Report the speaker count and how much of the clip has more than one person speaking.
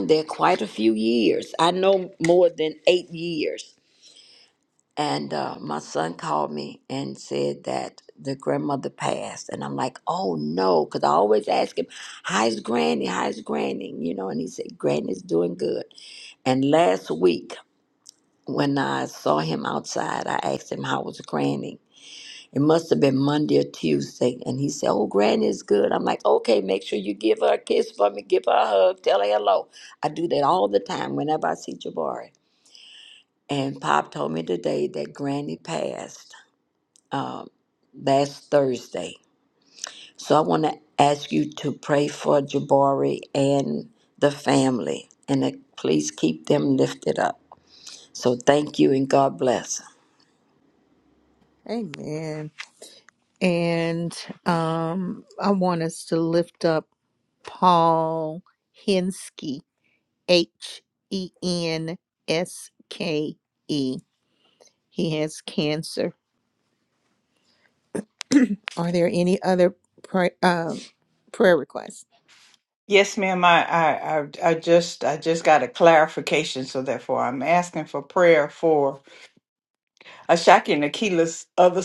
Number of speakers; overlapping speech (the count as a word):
three, no overlap